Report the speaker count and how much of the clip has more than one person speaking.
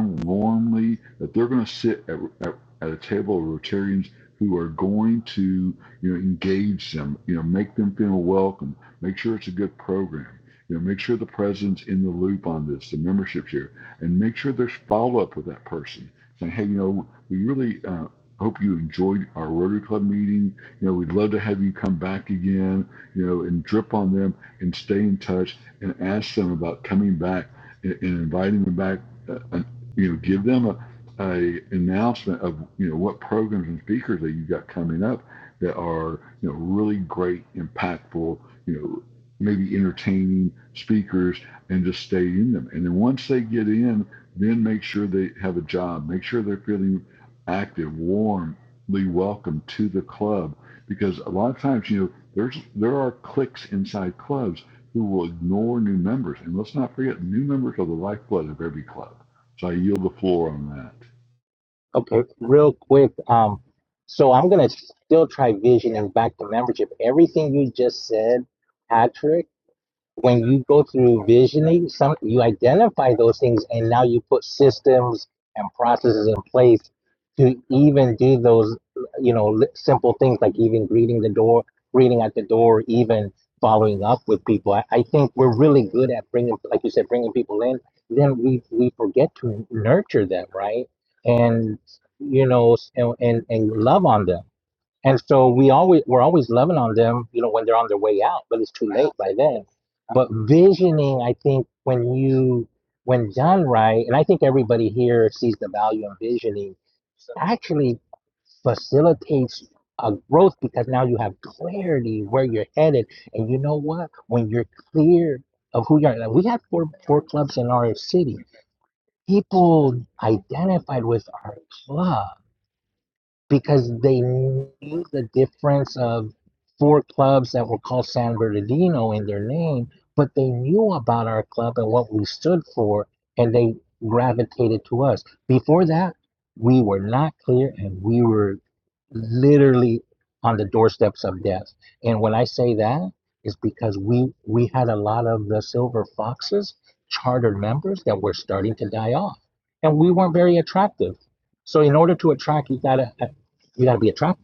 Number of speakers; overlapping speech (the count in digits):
2, no overlap